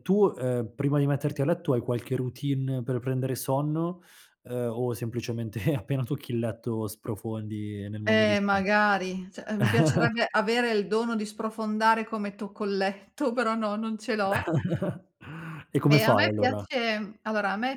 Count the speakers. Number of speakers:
2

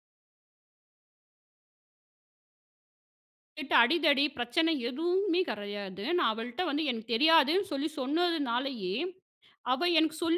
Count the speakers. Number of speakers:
1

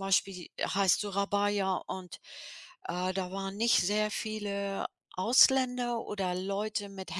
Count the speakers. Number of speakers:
1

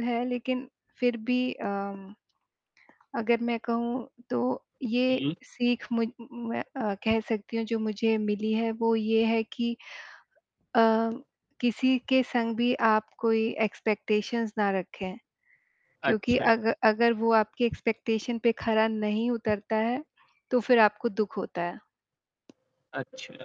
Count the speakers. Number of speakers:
2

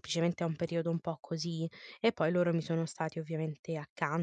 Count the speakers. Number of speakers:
1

